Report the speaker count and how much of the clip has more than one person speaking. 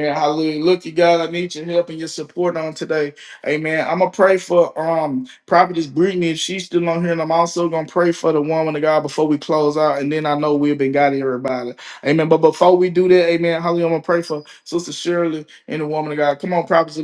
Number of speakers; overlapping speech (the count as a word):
one, no overlap